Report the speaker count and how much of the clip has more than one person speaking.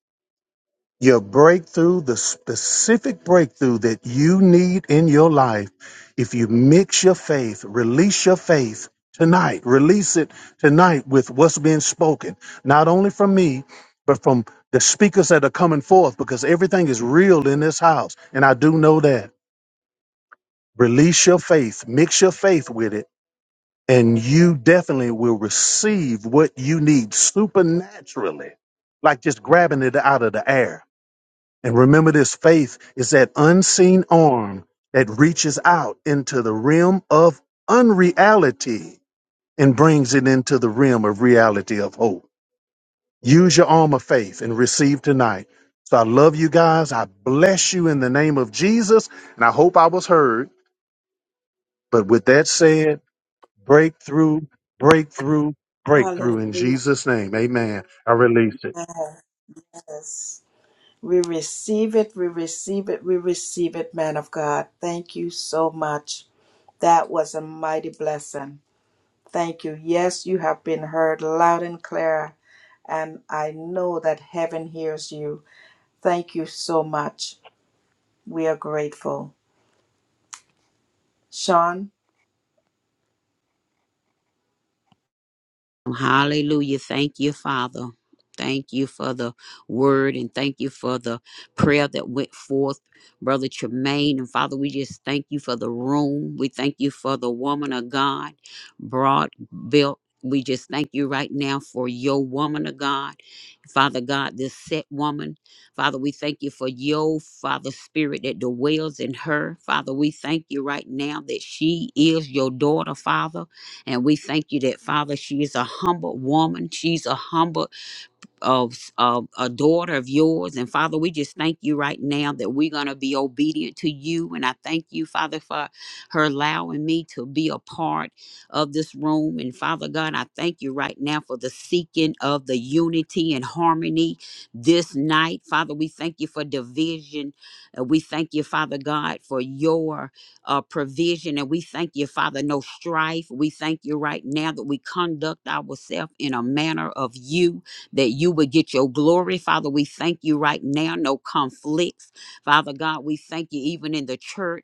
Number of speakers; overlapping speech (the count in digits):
3, about 1%